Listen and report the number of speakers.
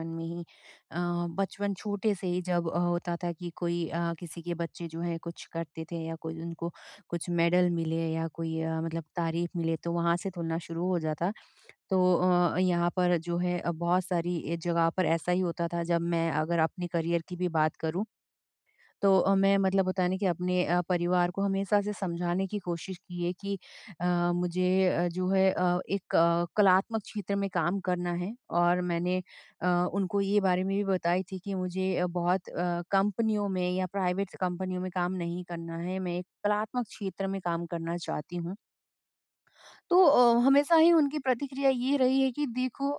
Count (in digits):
1